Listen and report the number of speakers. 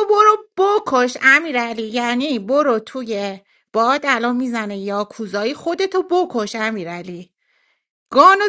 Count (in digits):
1